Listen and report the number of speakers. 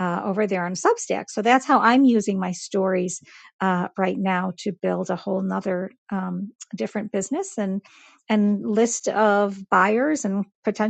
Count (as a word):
one